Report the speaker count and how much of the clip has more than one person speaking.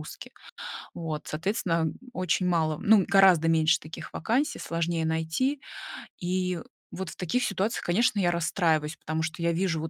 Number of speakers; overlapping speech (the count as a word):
one, no overlap